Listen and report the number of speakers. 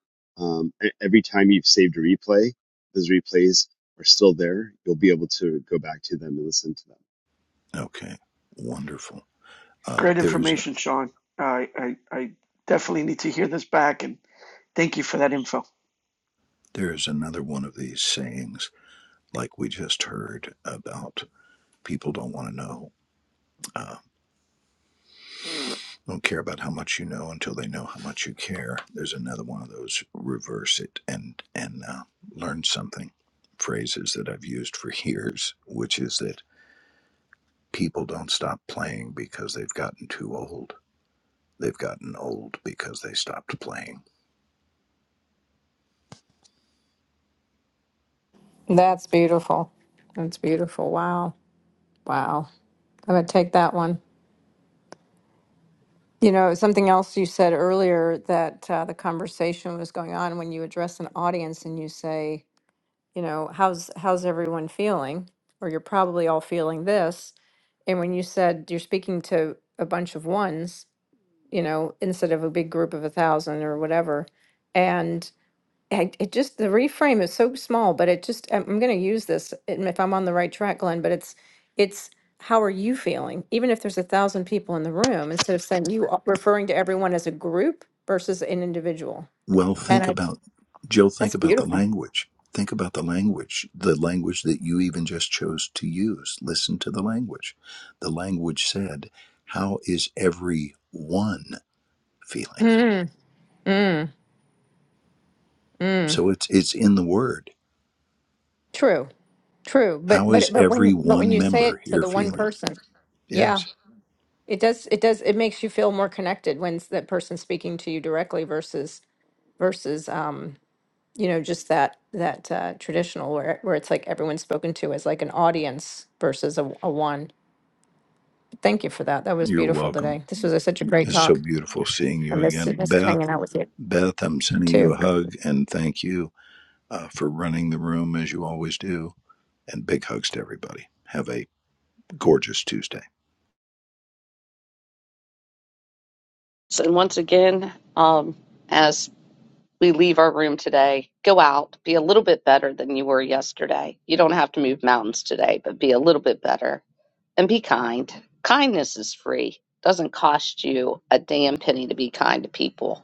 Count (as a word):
five